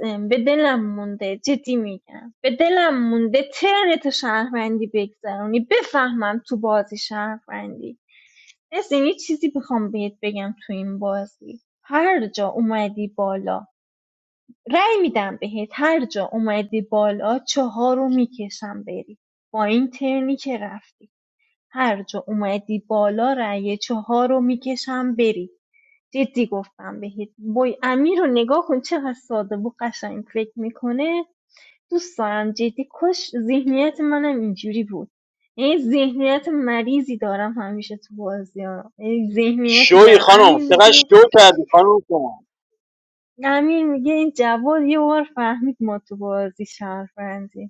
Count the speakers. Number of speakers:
2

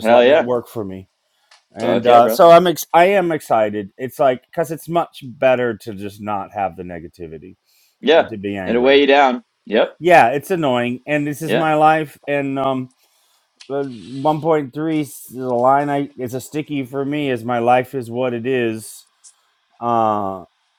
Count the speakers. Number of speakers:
2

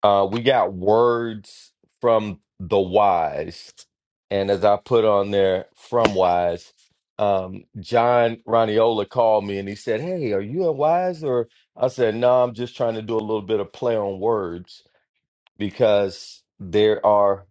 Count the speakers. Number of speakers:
1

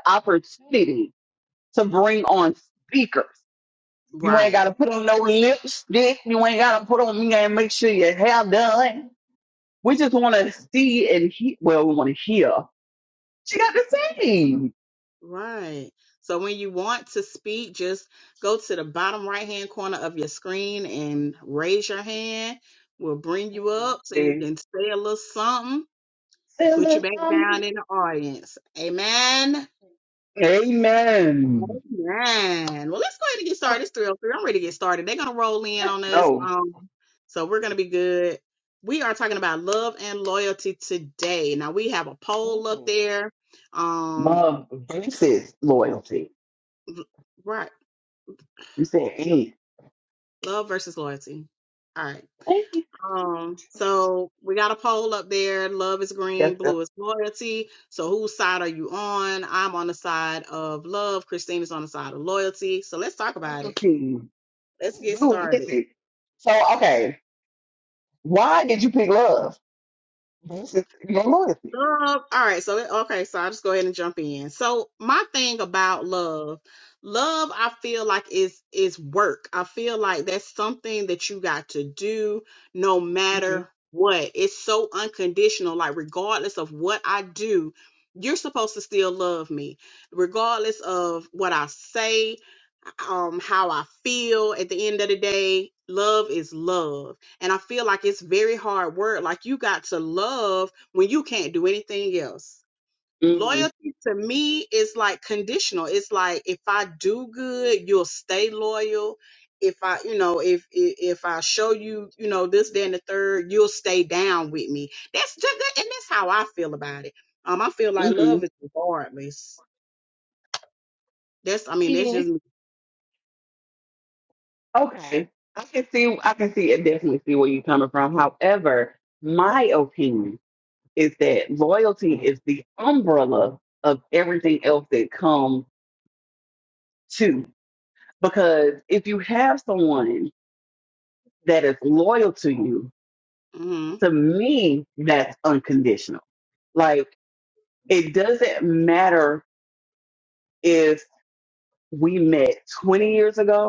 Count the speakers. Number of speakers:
2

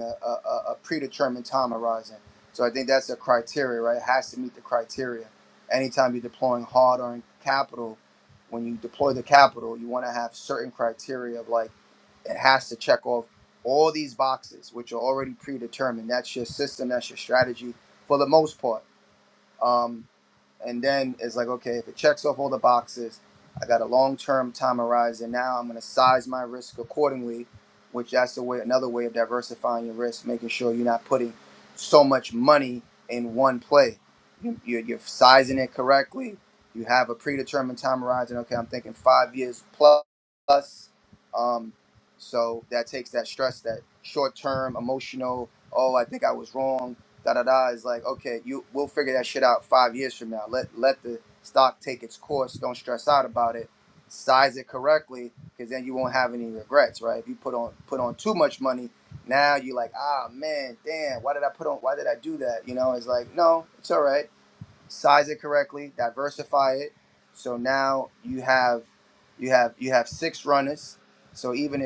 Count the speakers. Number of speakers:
1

